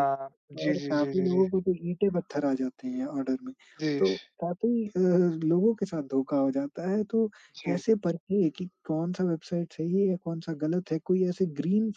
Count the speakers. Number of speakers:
two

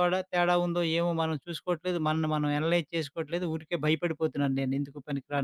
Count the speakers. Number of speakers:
one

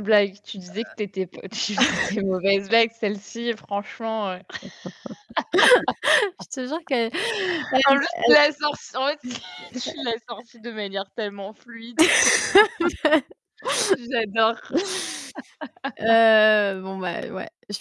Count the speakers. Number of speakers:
two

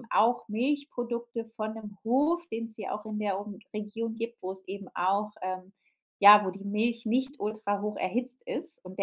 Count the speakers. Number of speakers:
one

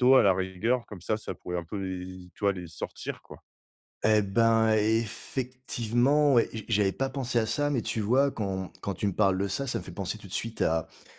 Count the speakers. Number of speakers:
two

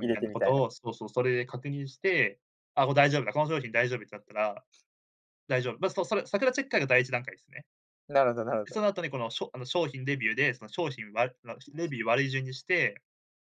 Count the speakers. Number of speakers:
two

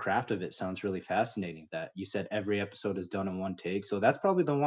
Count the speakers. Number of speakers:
one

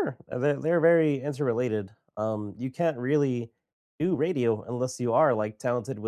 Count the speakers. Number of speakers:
one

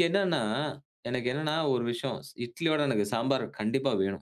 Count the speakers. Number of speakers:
one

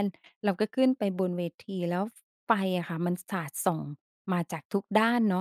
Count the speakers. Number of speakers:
one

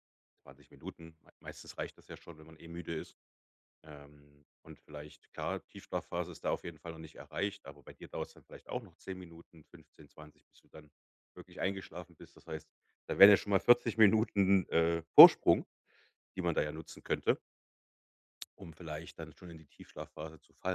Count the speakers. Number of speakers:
one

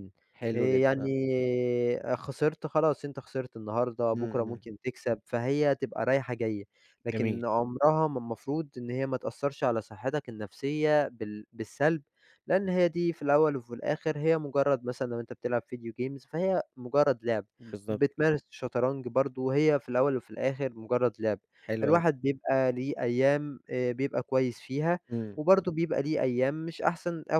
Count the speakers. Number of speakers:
two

